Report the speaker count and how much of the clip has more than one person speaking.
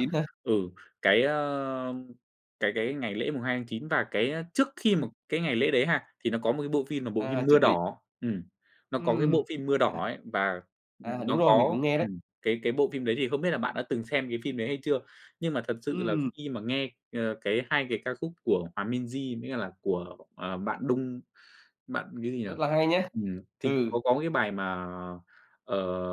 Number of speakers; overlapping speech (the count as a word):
two, about 12%